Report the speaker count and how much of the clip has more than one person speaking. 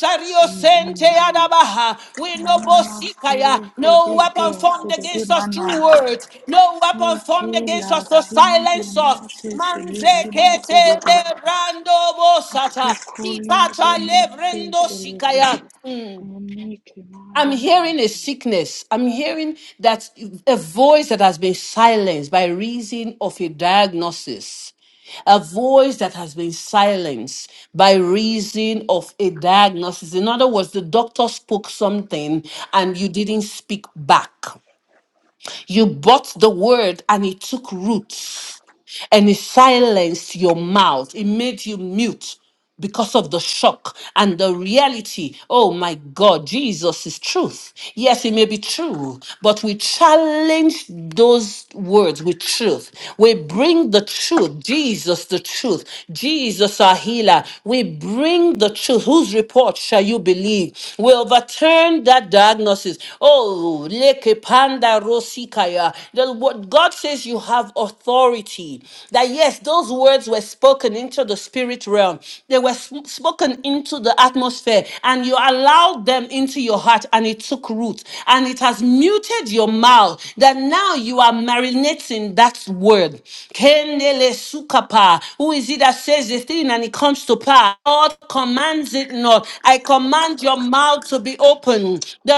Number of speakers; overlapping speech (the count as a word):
two, about 12%